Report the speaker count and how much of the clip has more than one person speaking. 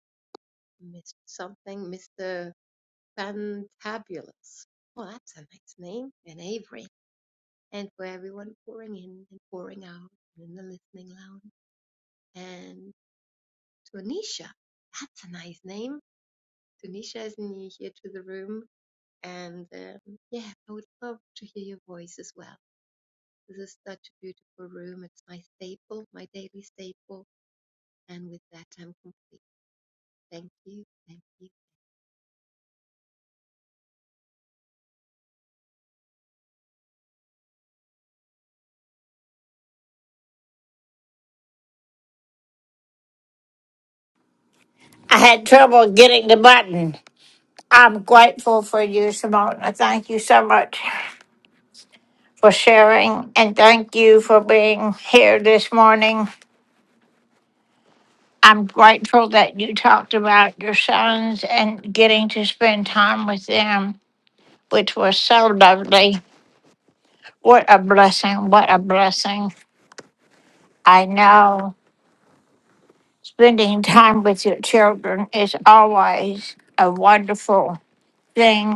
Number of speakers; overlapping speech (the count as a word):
two, no overlap